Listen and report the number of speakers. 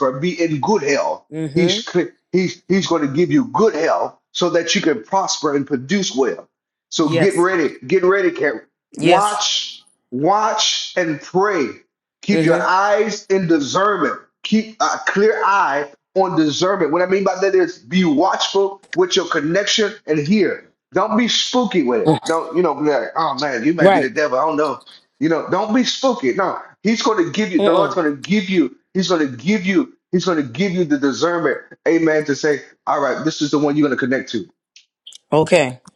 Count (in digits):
2